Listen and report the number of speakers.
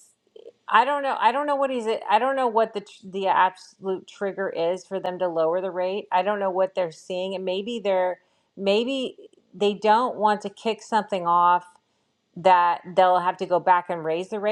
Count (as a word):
one